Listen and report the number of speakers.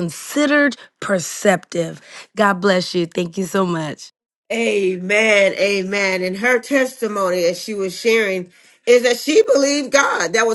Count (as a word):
two